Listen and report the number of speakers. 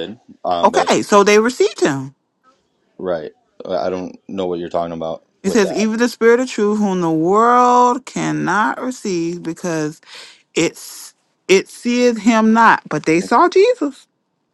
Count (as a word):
two